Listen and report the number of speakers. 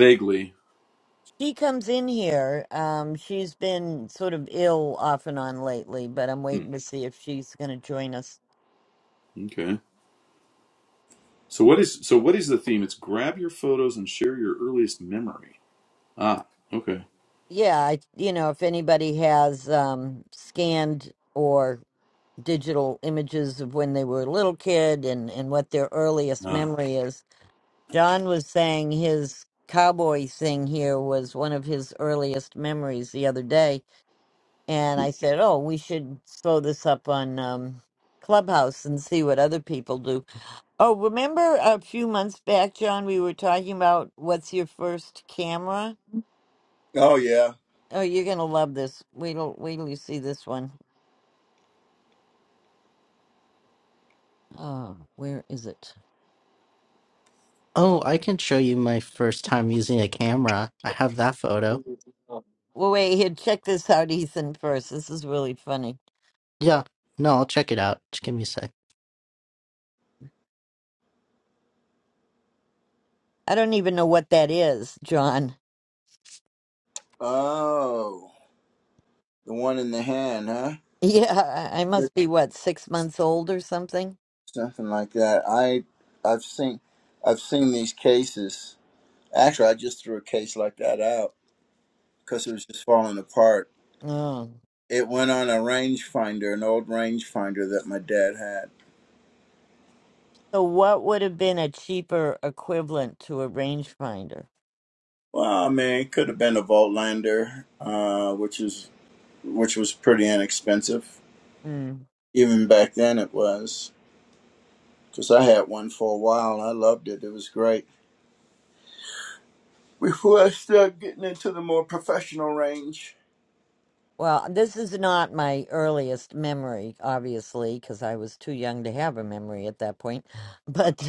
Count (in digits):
4